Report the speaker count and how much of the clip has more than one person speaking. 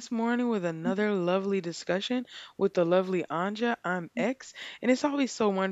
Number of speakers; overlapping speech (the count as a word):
one, no overlap